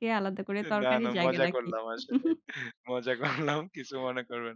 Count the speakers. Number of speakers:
2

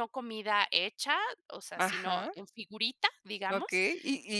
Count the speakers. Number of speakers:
2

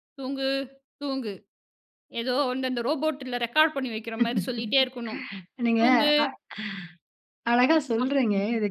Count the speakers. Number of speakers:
2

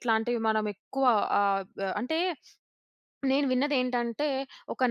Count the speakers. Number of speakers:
1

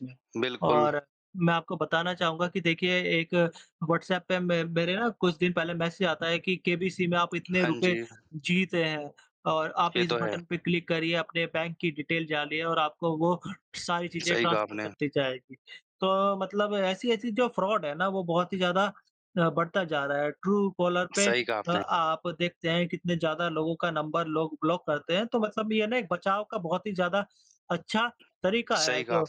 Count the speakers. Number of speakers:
2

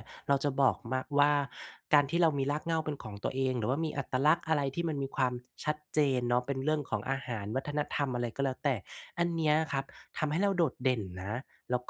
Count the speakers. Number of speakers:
1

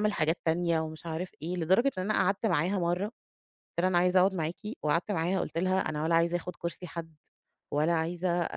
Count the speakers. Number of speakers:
1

